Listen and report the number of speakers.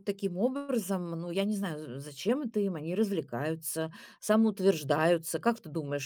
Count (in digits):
1